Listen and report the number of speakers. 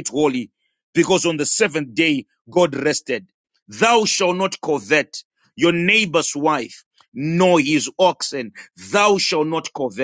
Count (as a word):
one